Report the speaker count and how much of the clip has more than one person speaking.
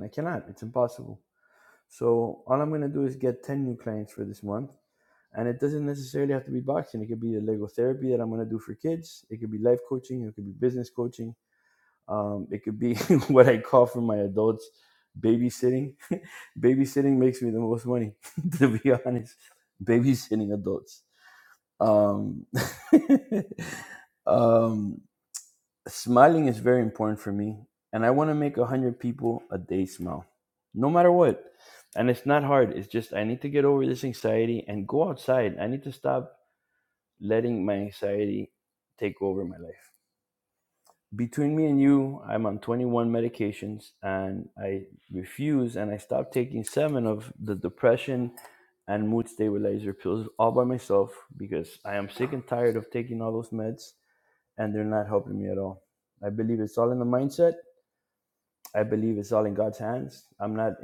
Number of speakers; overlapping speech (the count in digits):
1, no overlap